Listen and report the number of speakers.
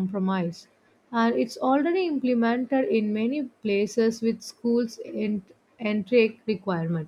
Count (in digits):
1